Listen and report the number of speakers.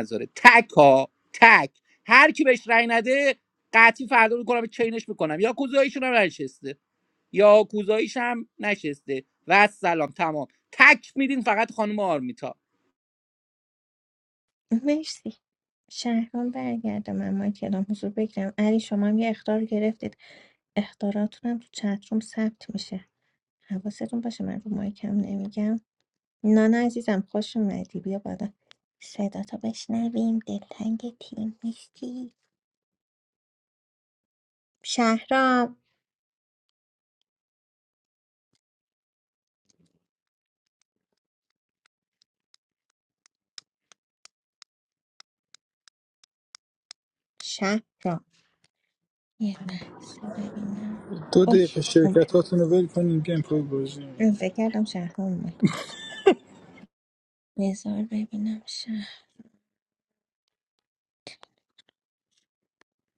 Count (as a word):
three